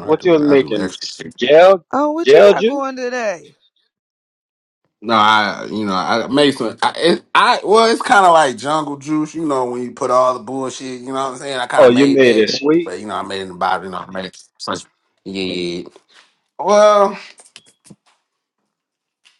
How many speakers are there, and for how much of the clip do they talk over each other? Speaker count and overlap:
three, about 11%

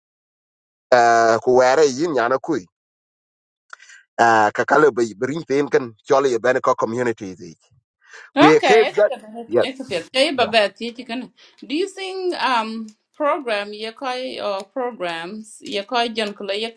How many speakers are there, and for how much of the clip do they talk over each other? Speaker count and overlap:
two, about 5%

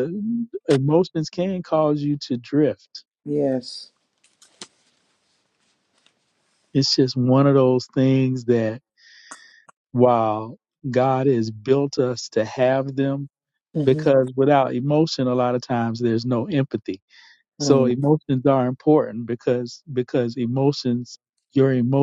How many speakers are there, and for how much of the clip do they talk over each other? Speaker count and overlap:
two, about 2%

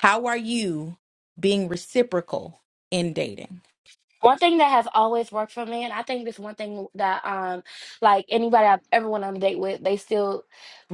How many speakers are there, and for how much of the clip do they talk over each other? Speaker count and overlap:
two, no overlap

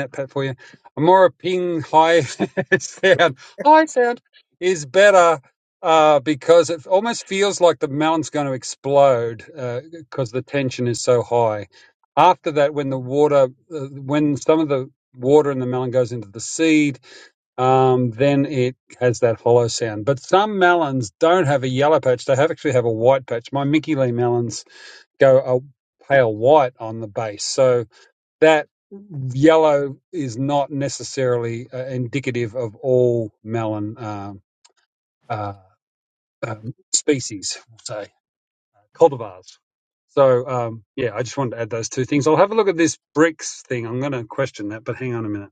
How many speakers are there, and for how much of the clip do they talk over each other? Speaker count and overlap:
one, no overlap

